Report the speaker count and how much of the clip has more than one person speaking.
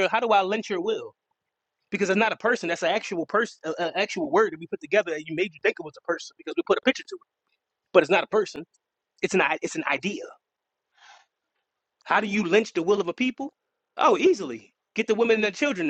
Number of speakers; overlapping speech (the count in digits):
1, no overlap